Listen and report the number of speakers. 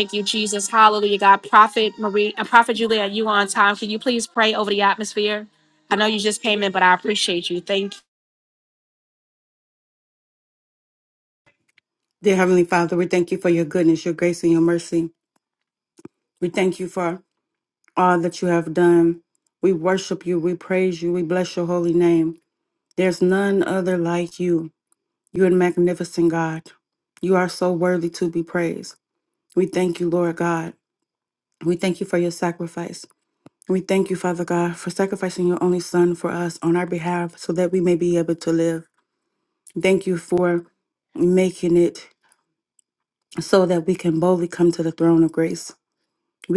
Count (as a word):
two